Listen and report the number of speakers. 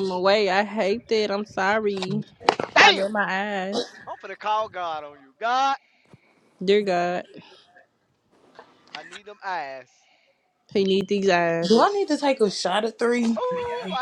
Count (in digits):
3